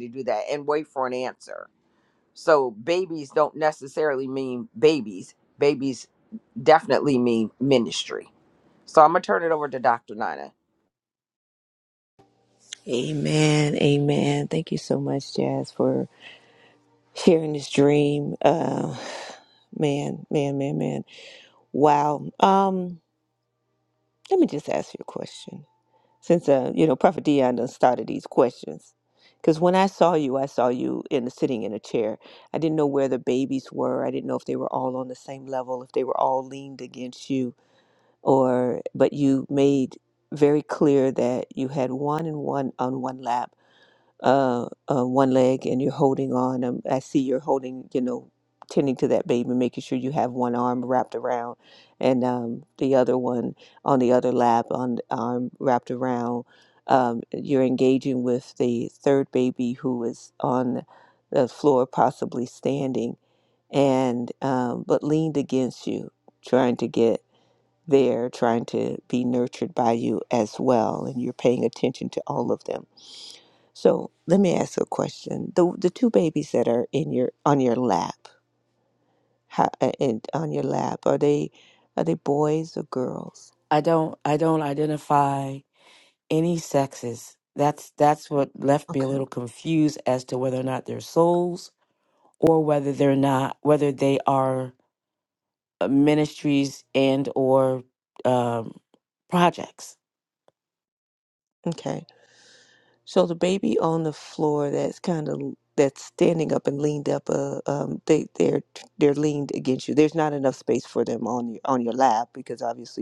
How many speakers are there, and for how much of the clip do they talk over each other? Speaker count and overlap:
three, under 1%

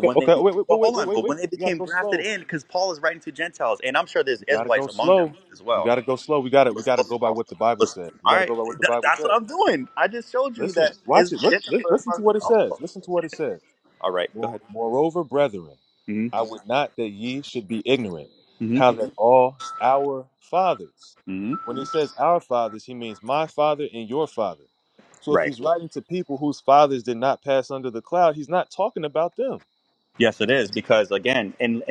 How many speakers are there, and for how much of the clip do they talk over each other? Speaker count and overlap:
two, about 25%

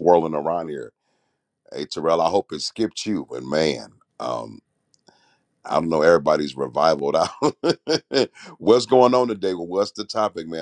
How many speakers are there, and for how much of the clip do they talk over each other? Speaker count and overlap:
one, no overlap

